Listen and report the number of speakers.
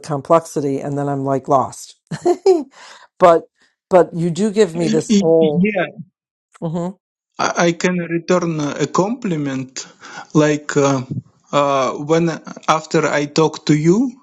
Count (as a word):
two